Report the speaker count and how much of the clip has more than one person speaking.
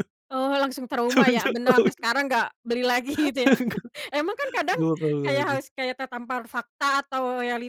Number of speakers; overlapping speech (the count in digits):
2, about 19%